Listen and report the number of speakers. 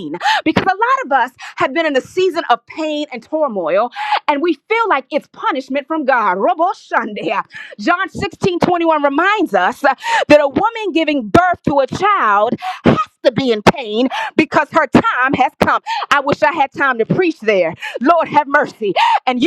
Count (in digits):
1